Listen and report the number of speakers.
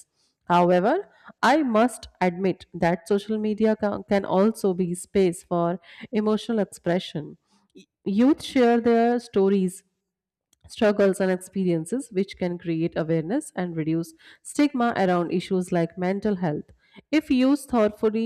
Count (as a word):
one